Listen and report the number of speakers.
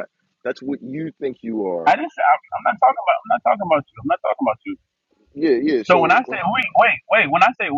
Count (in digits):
2